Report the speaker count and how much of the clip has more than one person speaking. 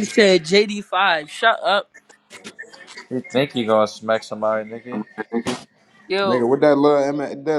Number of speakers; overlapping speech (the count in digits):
3, about 5%